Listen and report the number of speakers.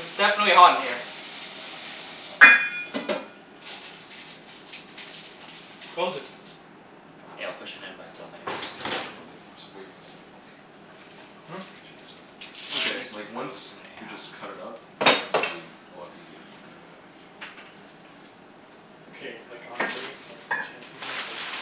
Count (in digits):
4